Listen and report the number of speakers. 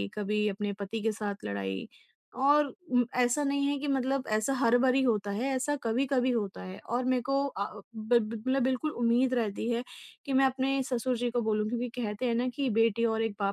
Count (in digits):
1